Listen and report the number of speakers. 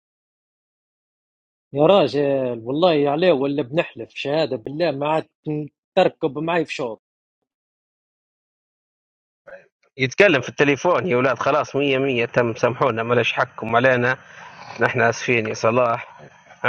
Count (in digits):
2